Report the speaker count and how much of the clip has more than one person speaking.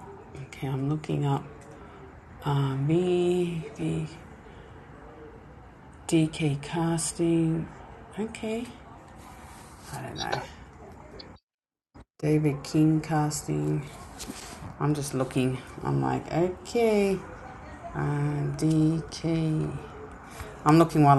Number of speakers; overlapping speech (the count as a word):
one, no overlap